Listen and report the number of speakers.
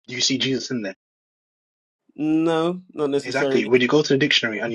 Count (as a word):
two